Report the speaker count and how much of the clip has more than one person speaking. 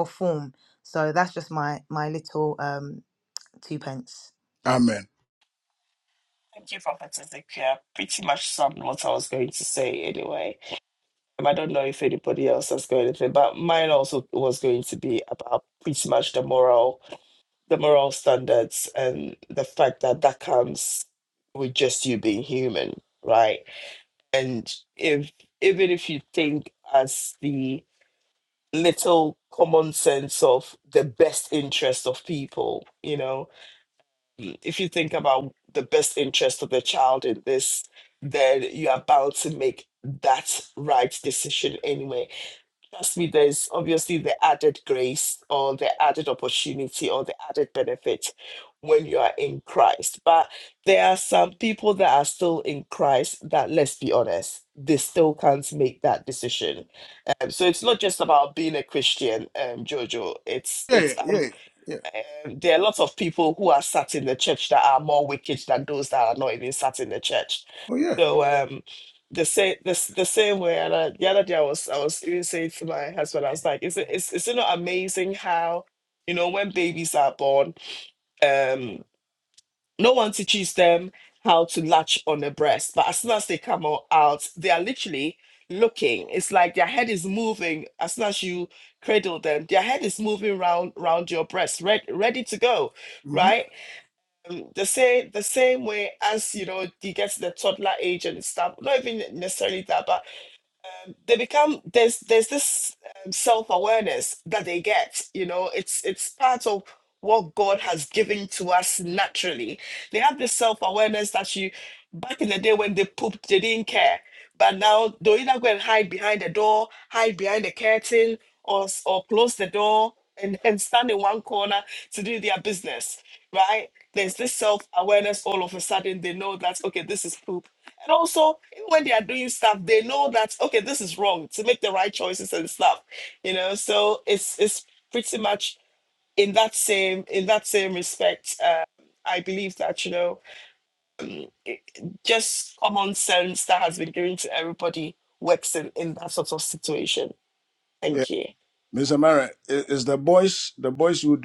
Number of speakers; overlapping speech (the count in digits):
3, about 1%